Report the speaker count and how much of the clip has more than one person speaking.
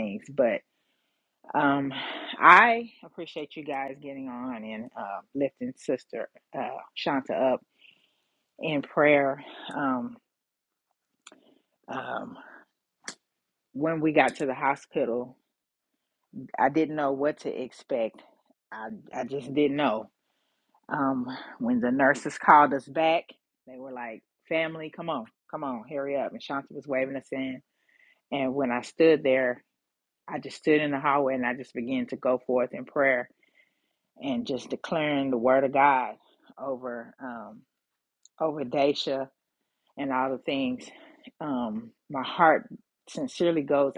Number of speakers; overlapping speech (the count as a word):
one, no overlap